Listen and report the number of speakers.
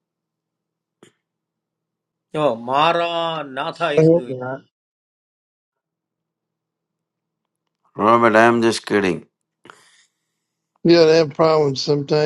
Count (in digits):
3